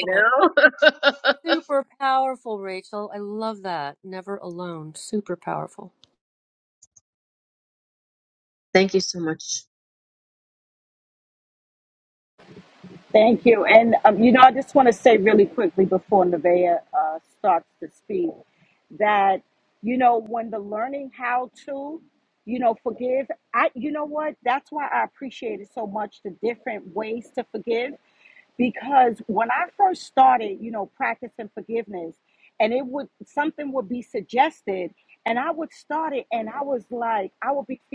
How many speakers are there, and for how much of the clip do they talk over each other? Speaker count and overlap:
three, about 1%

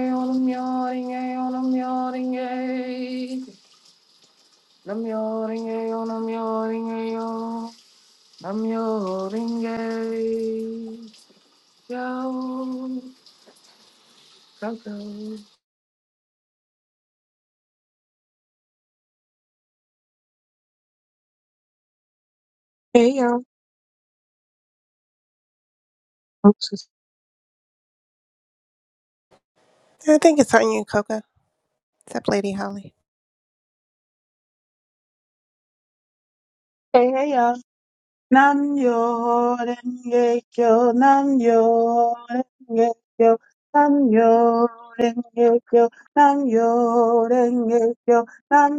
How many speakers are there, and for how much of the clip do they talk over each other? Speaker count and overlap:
three, no overlap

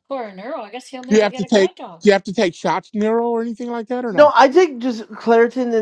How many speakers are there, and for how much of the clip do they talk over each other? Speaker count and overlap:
three, about 12%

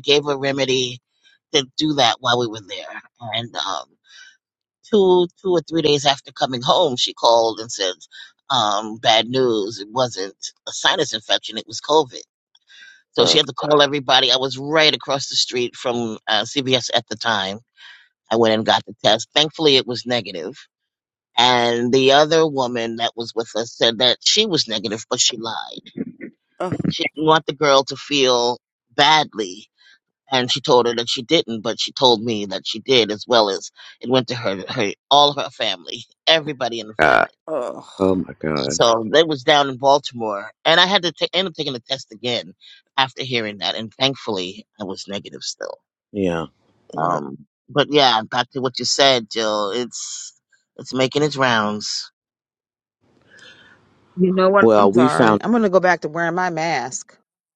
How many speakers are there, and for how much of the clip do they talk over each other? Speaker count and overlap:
four, about 3%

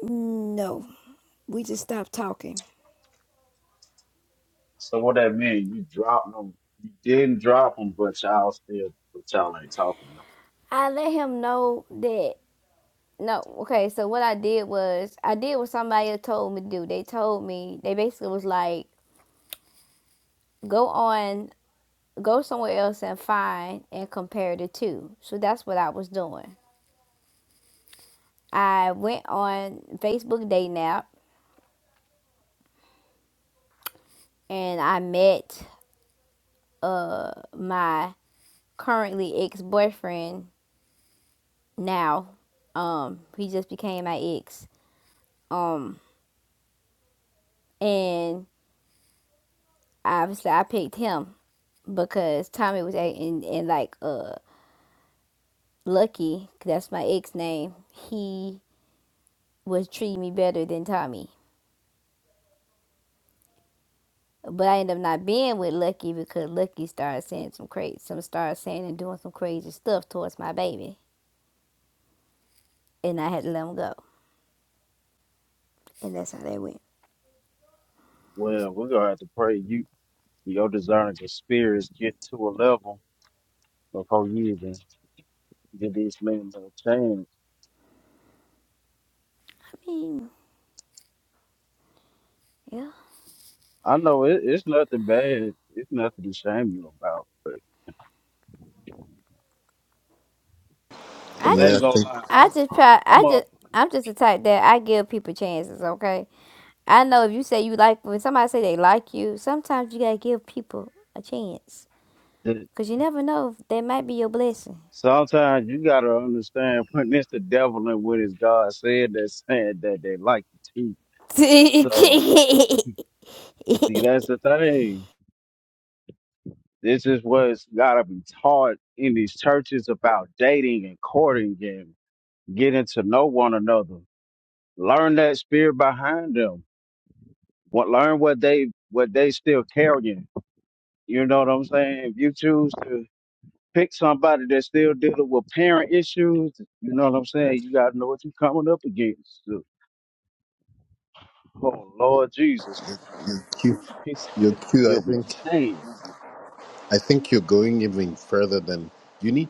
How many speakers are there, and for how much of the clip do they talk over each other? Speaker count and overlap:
three, about 1%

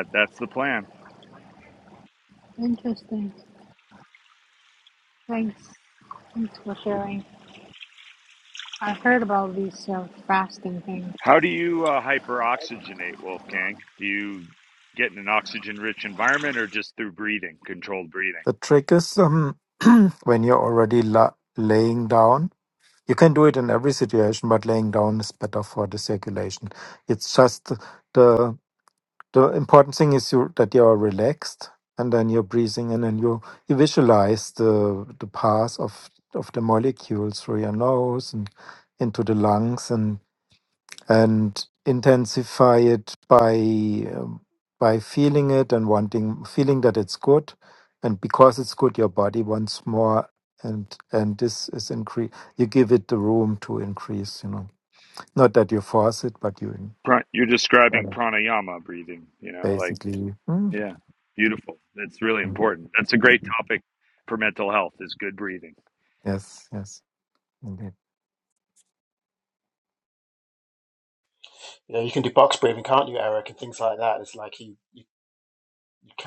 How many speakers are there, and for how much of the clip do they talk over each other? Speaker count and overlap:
four, about 1%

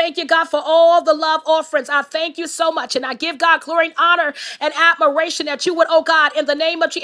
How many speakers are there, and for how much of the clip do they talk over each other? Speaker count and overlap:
one, no overlap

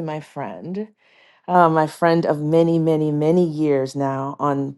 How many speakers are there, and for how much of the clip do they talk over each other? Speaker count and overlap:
one, no overlap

